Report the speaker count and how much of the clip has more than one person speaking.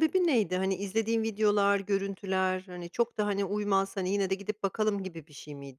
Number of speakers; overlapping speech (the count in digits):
1, no overlap